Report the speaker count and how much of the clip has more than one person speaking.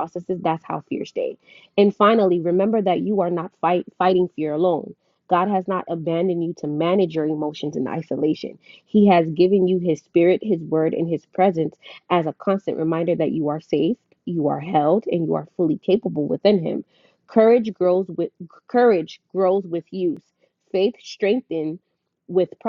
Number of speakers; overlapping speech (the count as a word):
one, no overlap